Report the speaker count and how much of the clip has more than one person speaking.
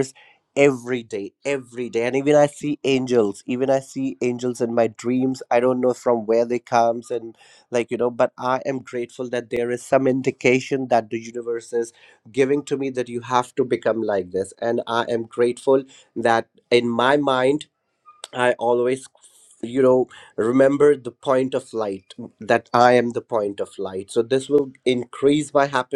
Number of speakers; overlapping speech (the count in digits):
1, no overlap